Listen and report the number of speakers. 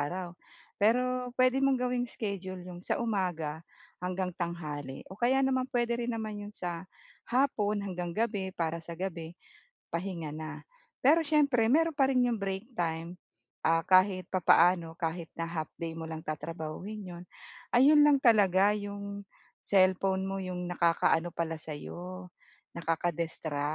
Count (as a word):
one